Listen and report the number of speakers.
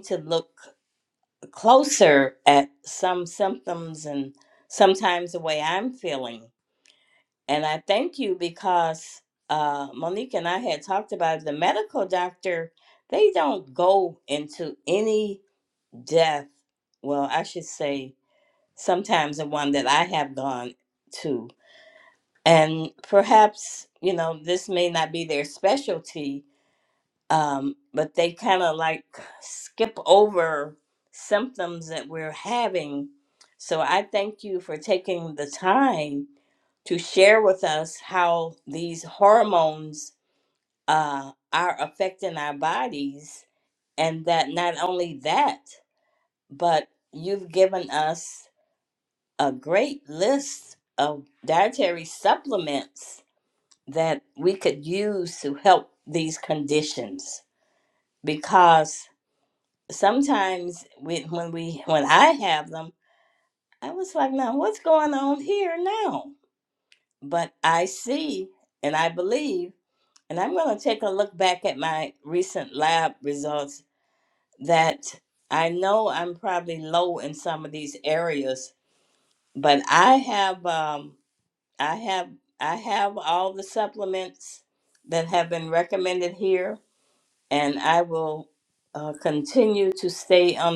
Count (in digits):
1